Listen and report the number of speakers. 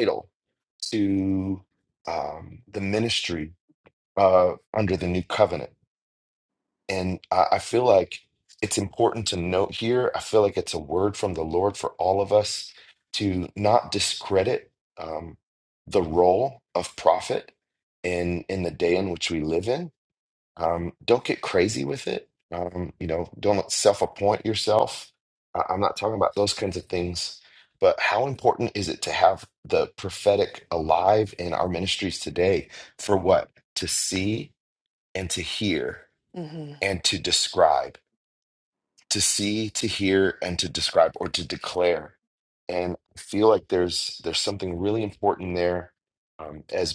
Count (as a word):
one